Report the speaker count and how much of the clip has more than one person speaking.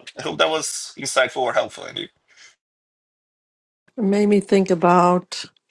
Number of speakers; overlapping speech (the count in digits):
2, no overlap